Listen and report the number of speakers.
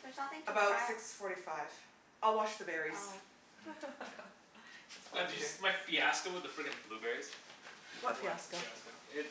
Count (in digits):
4